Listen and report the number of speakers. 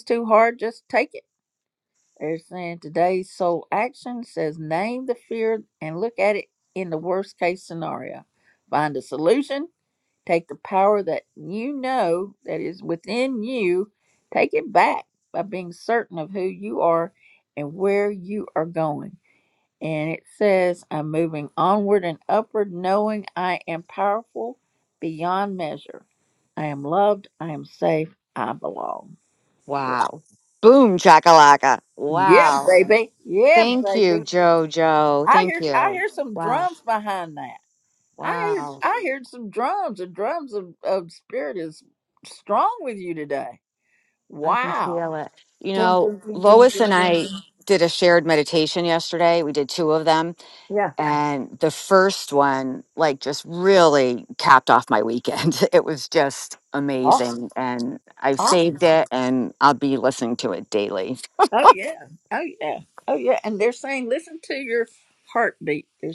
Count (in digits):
2